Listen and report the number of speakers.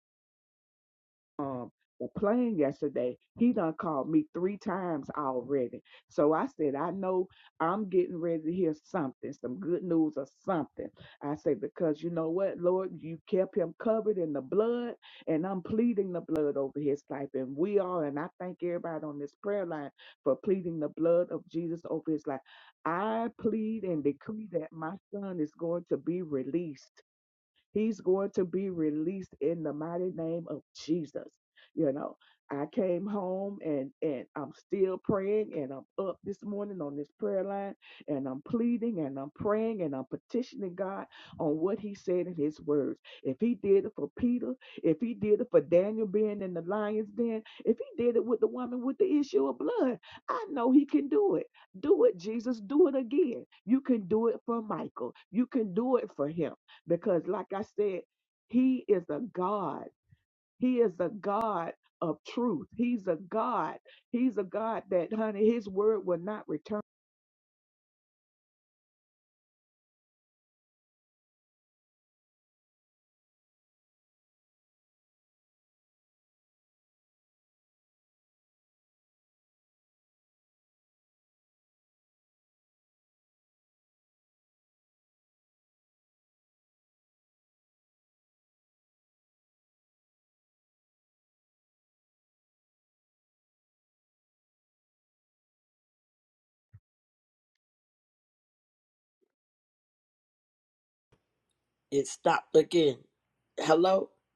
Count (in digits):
2